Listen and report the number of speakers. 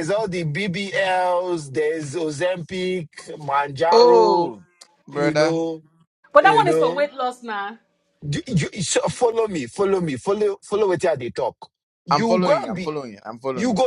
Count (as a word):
three